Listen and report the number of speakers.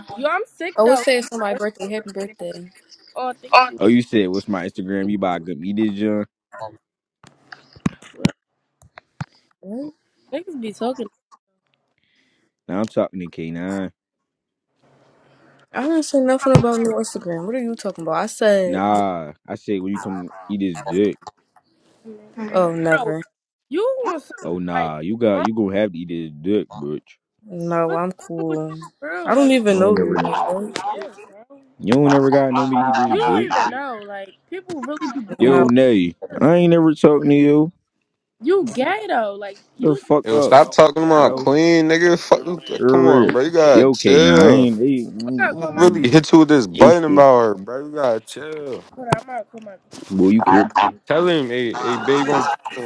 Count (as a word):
four